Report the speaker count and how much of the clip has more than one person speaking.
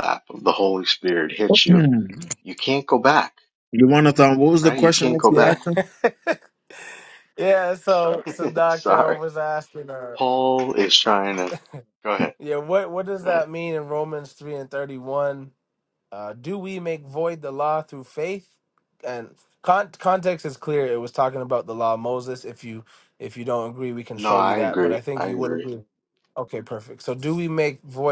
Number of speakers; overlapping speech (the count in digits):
3, about 12%